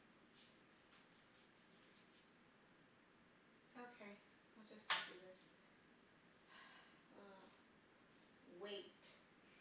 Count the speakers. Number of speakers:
one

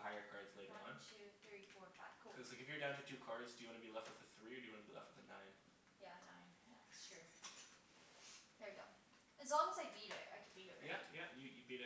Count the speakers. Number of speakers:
two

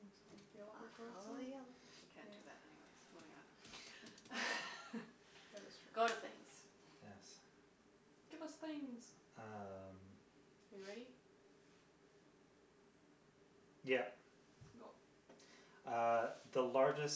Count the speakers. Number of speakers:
three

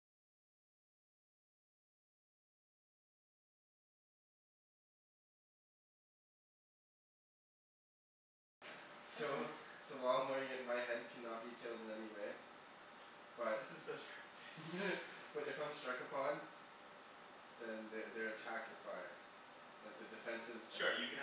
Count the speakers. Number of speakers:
two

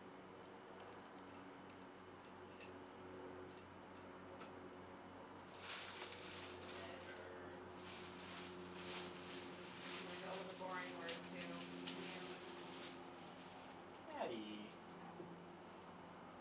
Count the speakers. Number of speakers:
two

